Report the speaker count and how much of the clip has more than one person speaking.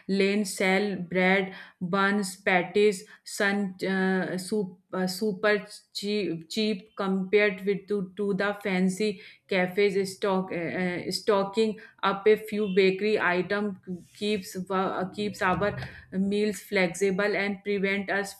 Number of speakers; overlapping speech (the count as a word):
one, no overlap